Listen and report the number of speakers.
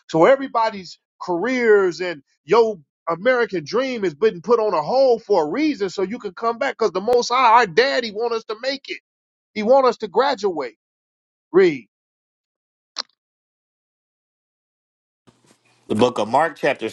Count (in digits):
2